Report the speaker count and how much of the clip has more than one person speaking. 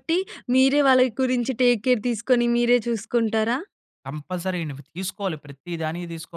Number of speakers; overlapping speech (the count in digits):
2, no overlap